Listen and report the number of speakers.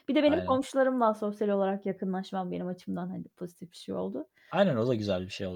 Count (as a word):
two